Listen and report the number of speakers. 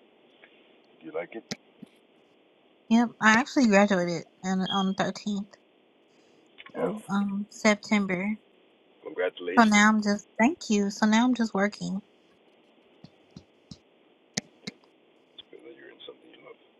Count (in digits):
2